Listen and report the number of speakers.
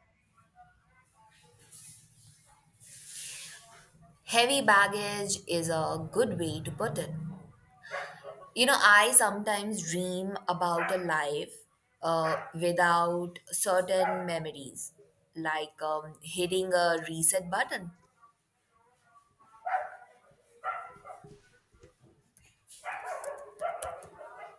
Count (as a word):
one